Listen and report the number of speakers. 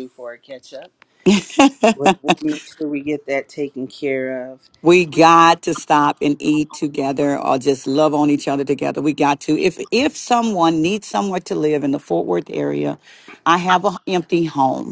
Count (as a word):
two